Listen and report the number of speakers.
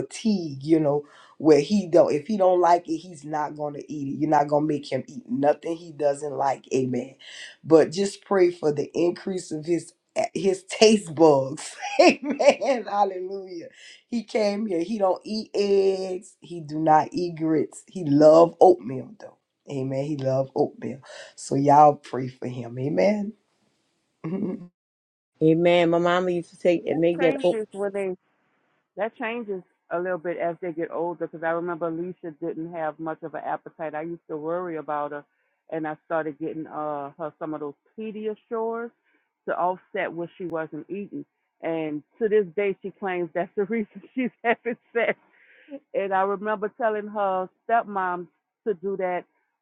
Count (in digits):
3